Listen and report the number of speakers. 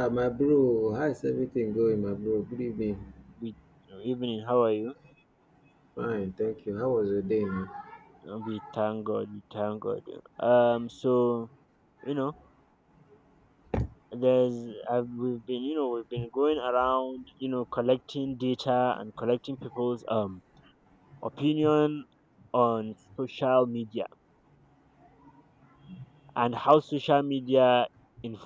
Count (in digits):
2